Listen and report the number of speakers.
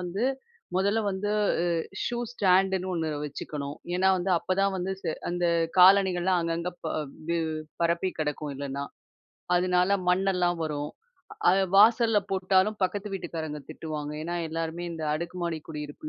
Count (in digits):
1